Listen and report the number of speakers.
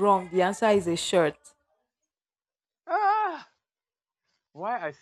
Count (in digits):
2